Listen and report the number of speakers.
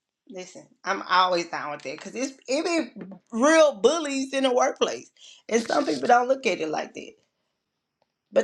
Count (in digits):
1